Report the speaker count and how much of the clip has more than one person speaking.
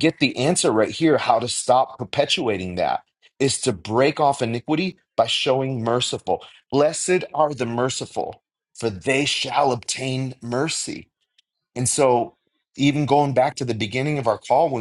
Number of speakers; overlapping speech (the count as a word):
one, no overlap